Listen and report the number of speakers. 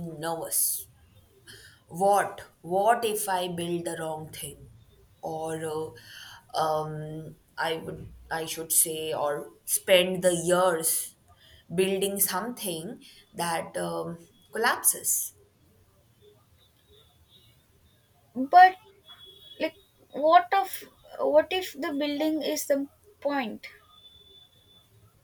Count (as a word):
two